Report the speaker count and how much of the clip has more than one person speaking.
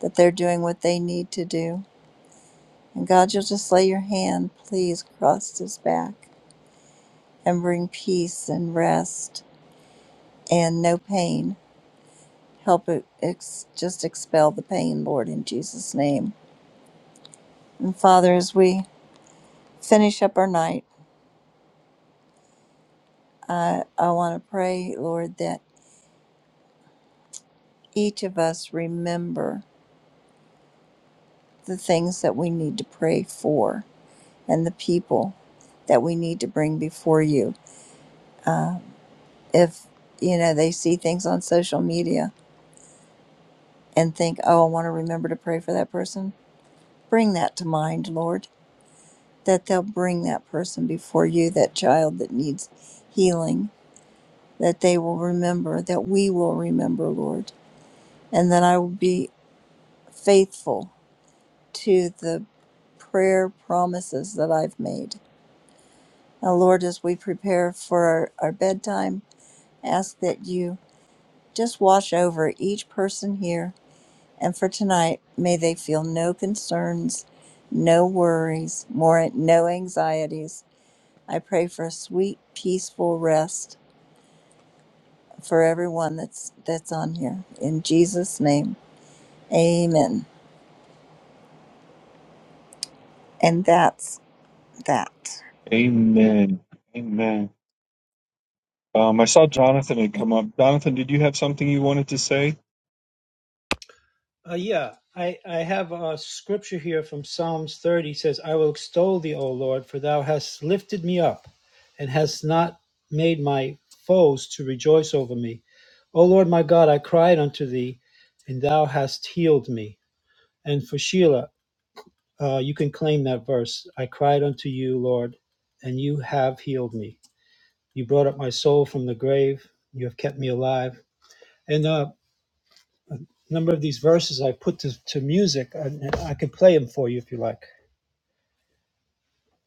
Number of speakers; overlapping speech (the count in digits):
3, no overlap